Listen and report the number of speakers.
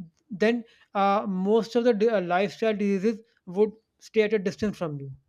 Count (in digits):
1